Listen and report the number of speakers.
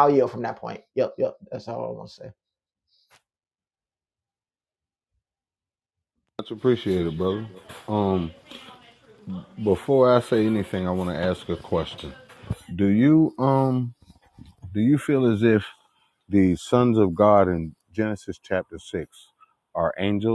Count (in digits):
2